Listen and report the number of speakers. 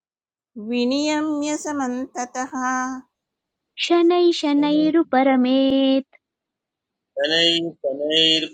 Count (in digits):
3